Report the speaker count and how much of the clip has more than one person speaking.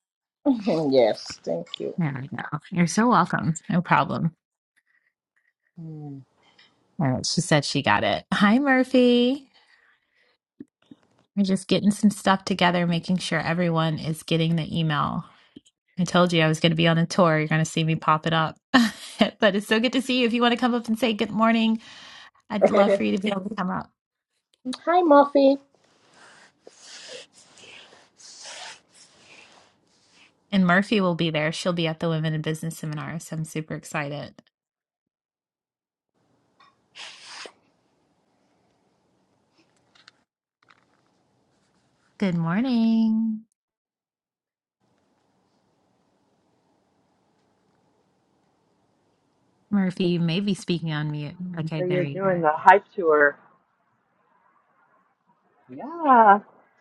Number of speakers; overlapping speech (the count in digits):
3, about 1%